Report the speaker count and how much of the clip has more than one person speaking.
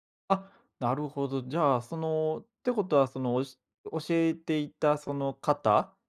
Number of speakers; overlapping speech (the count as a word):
one, no overlap